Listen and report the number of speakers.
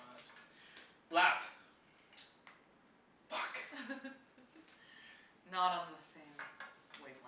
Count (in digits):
2